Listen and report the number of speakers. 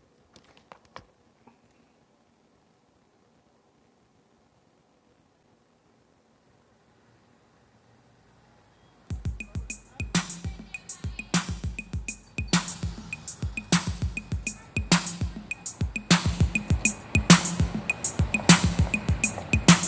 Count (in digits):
0